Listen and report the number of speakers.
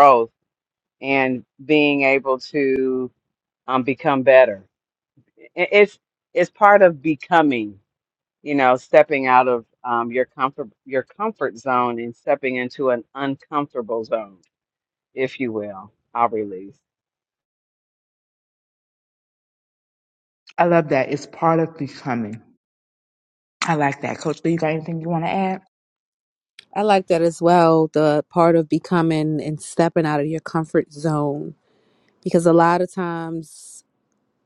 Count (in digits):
3